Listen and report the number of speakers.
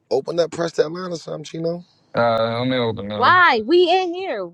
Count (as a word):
three